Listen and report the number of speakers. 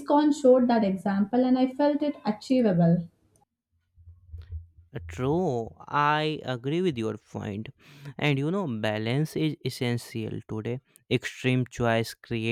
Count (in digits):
2